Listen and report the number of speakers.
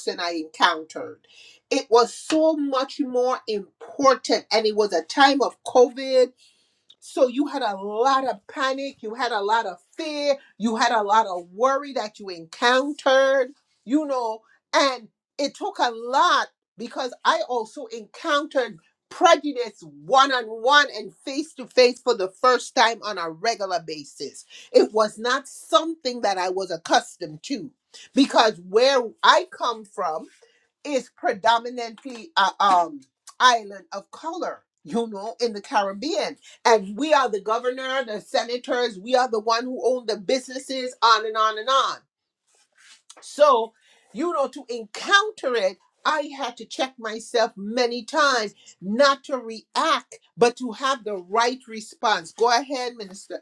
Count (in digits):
1